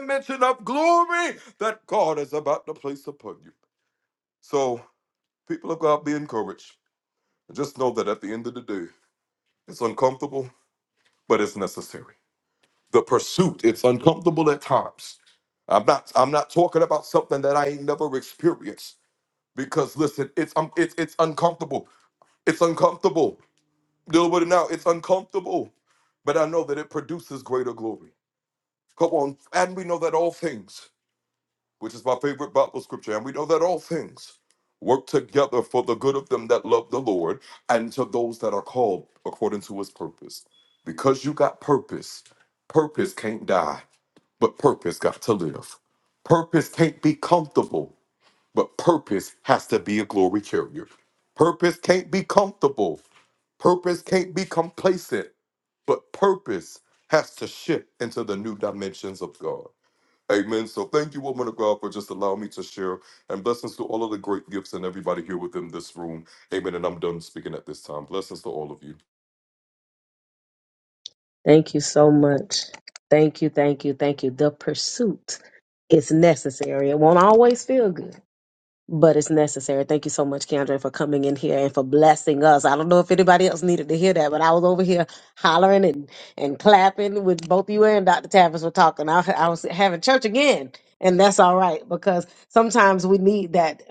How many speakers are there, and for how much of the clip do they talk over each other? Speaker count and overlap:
2, no overlap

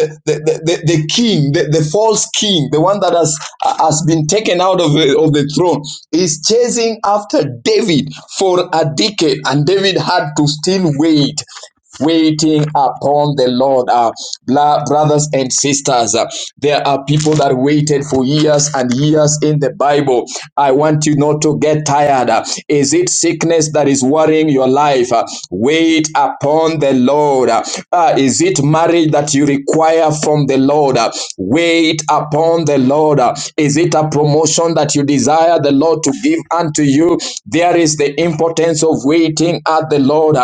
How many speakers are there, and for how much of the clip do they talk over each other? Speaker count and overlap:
1, no overlap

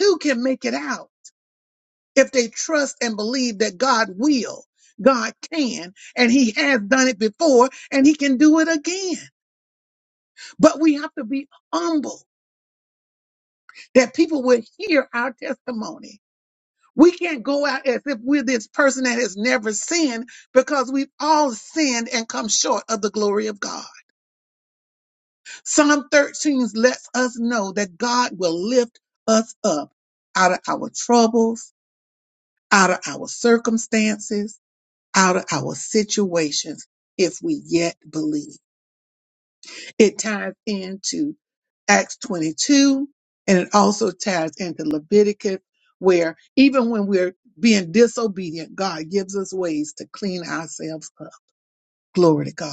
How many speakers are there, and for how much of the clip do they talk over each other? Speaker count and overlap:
1, no overlap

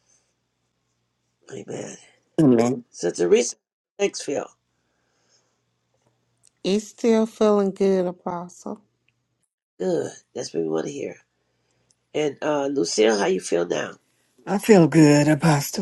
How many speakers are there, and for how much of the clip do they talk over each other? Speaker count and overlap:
3, no overlap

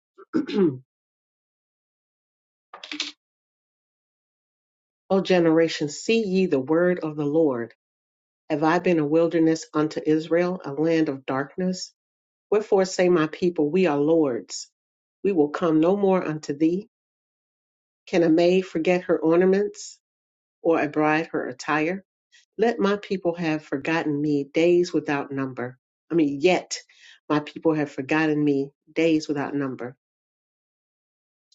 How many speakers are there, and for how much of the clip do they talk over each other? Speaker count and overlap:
1, no overlap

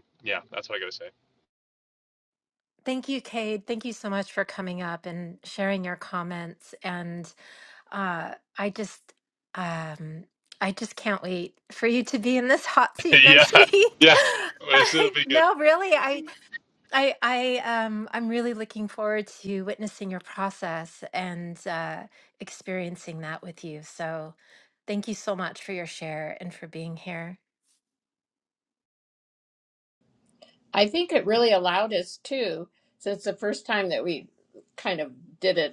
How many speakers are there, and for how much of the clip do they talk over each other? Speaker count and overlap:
3, about 5%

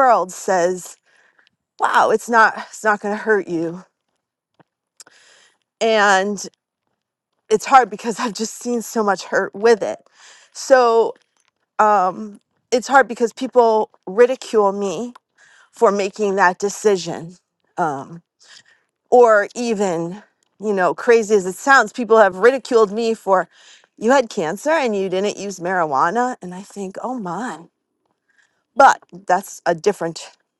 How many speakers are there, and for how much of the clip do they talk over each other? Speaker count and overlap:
1, no overlap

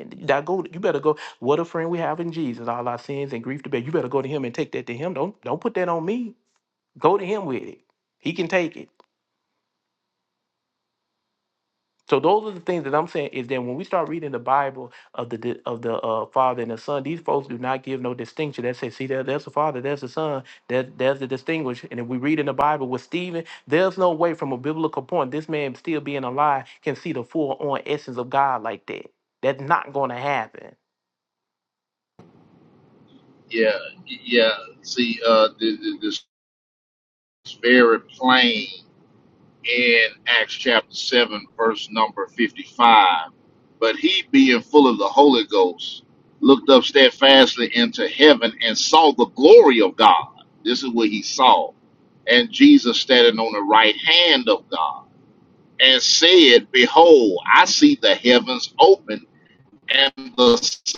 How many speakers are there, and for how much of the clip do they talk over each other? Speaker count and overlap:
2, no overlap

